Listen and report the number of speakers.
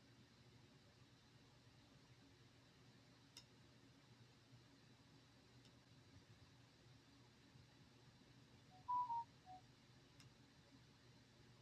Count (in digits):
0